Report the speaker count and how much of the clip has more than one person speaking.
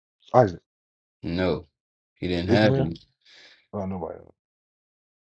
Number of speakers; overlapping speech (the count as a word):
two, about 8%